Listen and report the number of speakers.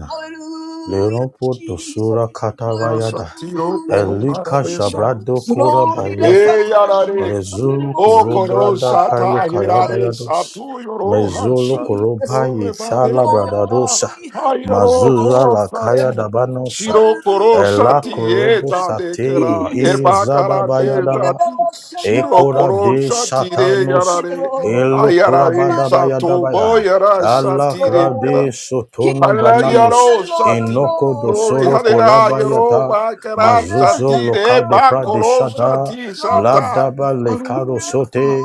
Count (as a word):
three